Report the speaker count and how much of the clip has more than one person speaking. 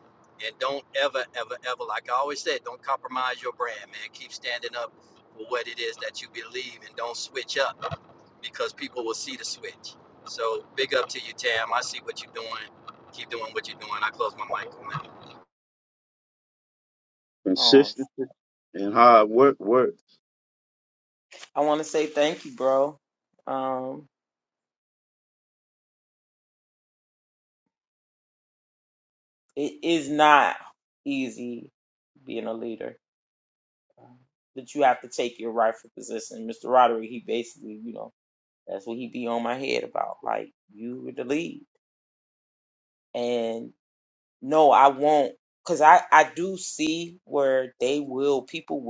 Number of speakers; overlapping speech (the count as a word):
three, about 1%